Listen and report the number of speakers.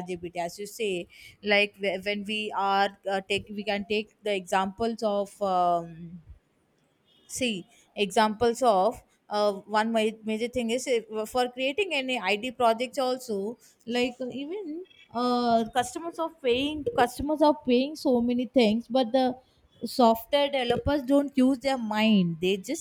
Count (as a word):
one